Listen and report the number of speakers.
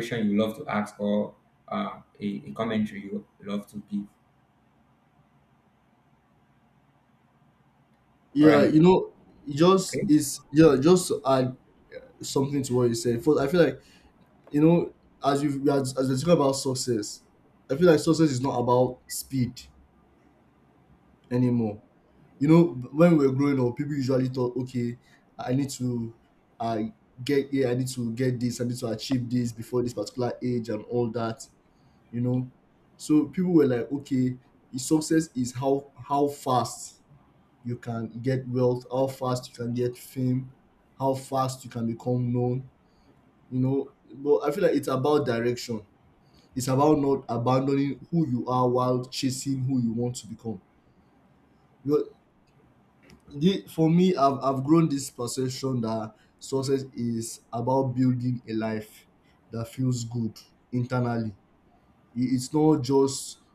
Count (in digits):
2